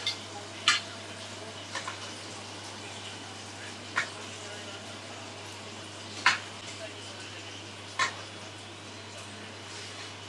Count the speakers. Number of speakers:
zero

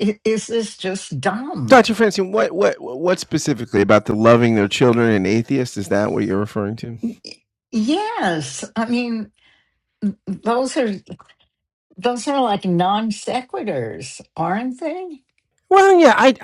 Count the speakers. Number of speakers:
two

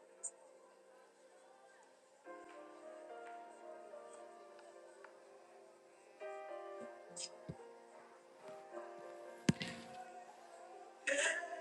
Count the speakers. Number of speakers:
zero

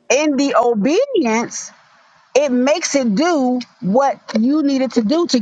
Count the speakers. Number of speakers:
one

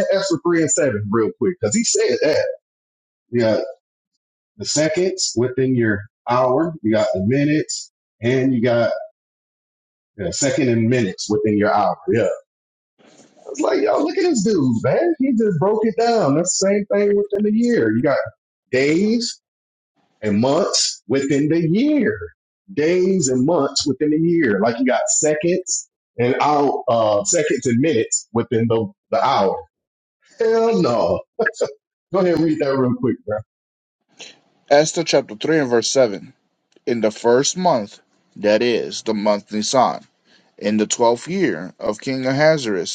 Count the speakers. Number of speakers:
two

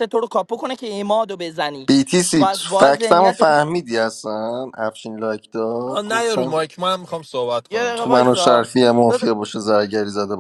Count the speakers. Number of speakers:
three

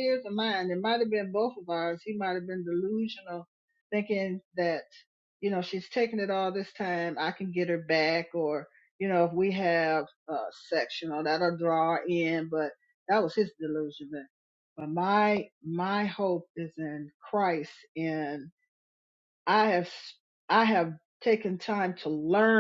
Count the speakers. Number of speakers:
one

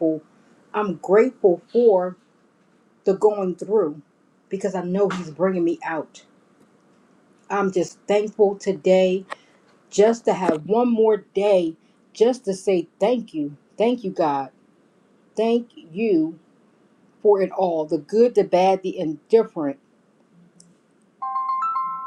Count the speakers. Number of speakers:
one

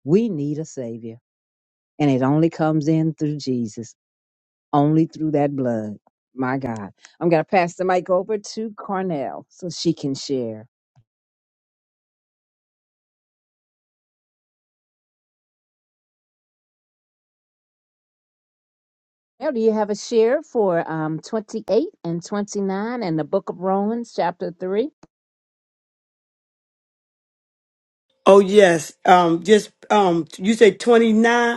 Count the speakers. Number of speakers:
two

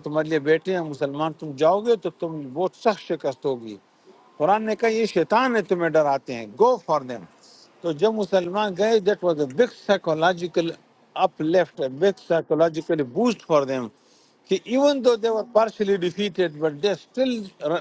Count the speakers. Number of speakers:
one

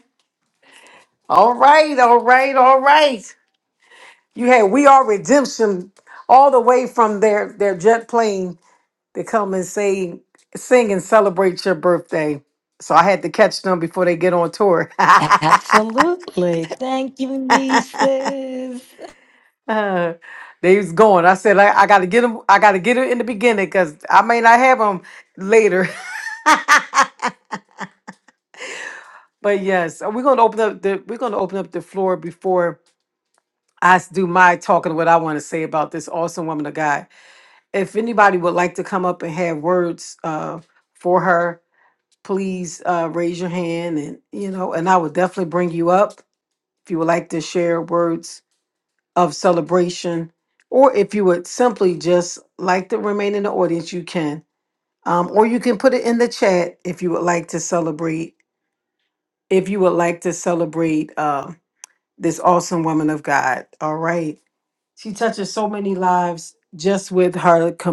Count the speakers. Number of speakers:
two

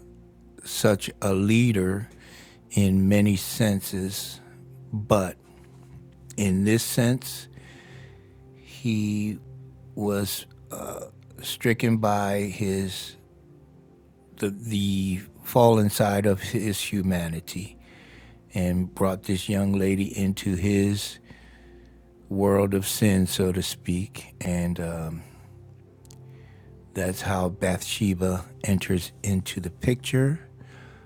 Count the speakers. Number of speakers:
one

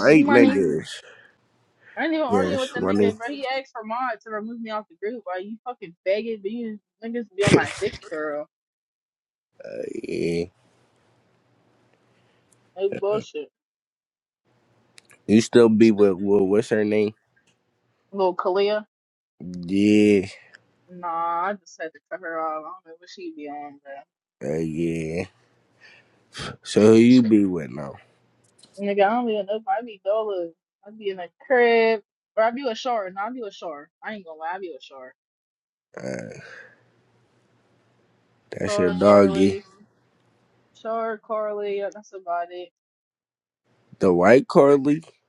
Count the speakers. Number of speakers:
two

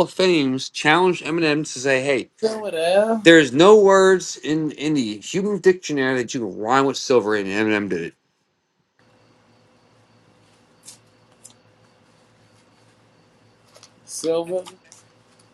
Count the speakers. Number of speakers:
two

